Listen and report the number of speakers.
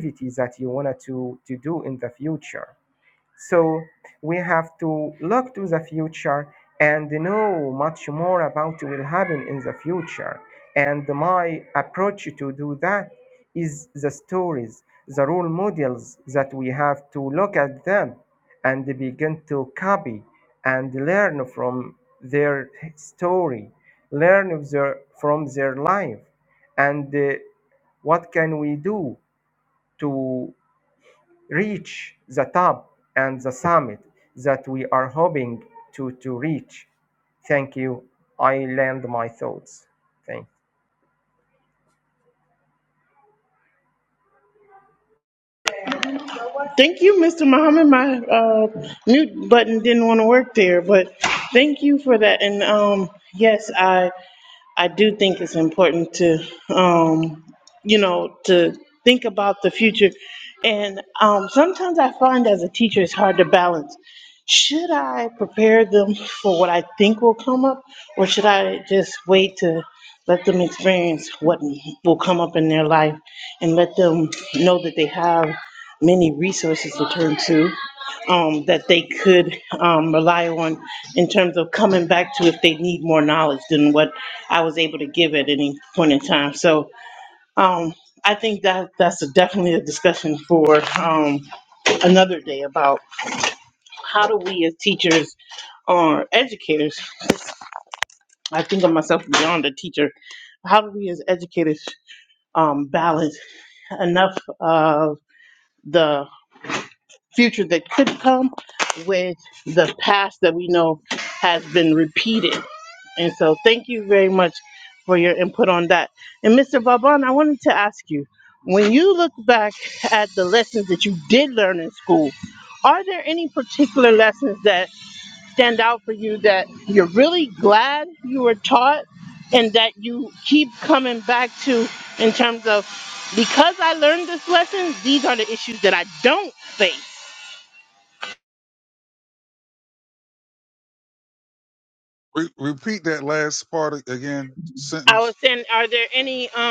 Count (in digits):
3